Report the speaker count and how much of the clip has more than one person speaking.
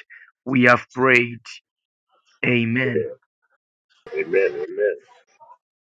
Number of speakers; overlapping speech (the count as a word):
two, about 3%